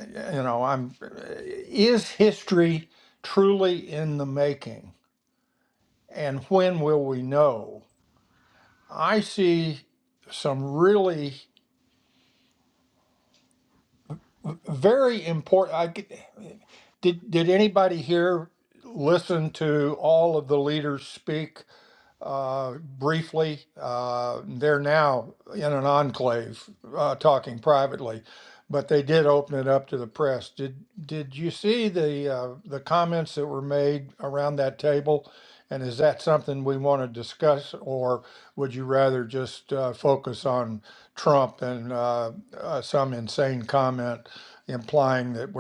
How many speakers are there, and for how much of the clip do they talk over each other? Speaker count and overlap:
one, no overlap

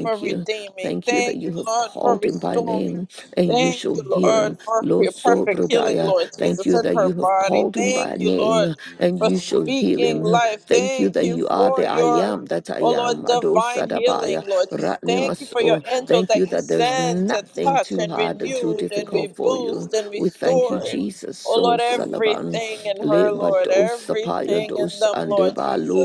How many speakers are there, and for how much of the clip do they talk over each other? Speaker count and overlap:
two, about 90%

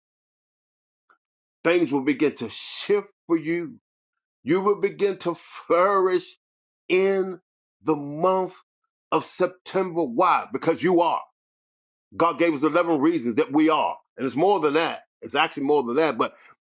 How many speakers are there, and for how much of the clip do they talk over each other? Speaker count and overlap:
one, no overlap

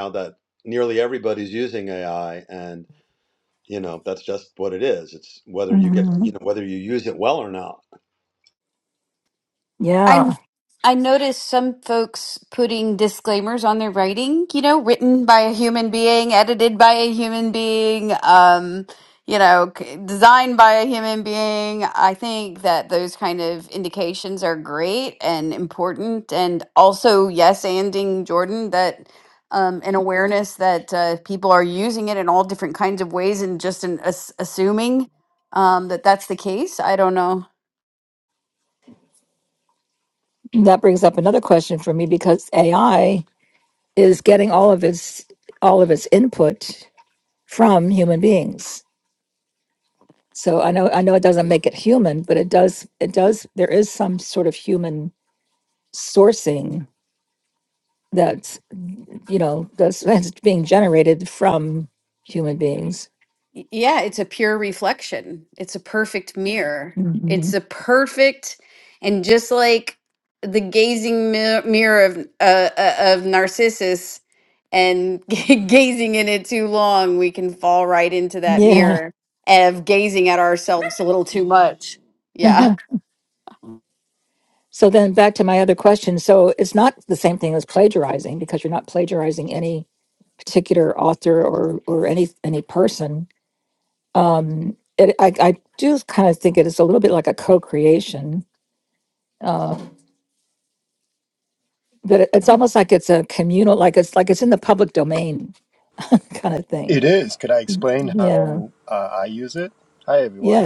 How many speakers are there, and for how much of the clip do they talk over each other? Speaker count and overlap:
four, about 3%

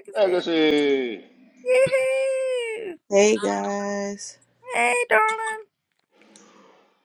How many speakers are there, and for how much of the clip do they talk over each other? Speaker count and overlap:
three, about 4%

